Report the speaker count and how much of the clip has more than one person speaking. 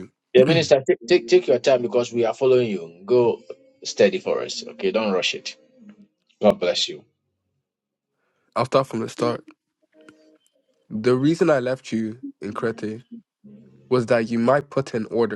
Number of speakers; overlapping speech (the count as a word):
two, no overlap